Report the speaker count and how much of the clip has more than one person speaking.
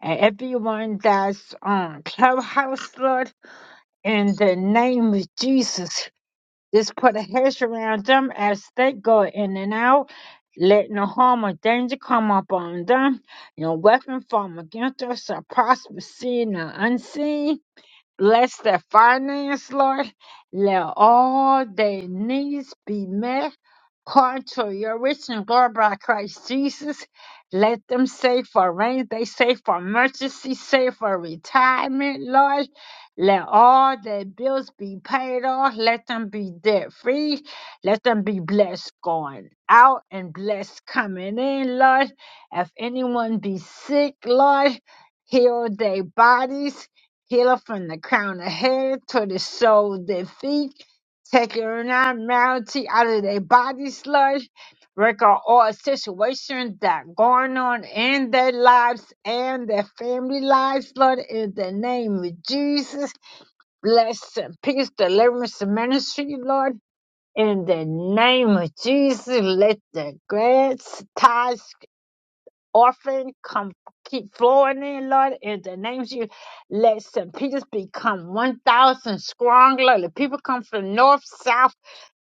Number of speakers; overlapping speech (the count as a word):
one, no overlap